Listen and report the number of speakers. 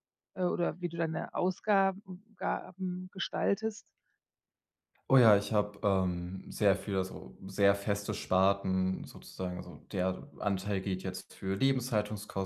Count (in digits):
2